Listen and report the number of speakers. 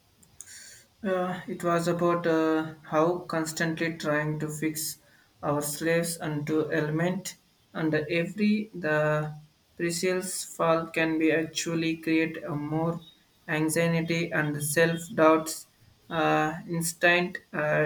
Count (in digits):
1